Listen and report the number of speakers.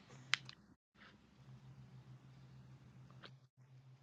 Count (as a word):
zero